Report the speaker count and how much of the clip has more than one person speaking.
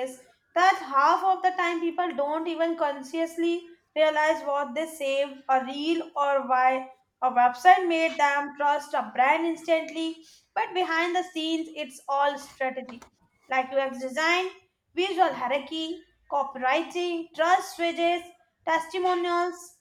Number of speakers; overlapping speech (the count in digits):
1, no overlap